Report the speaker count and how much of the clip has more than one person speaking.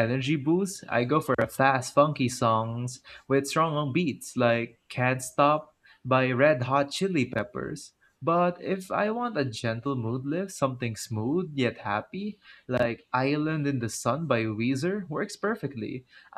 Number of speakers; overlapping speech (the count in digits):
1, no overlap